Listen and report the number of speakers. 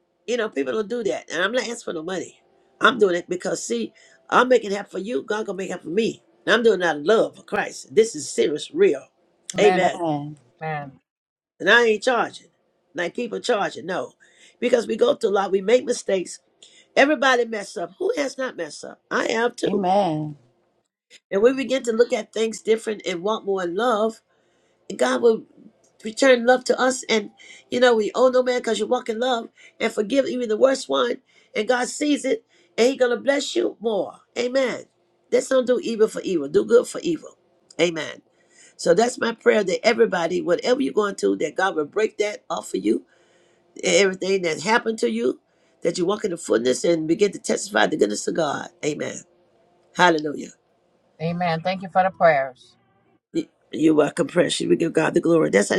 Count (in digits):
3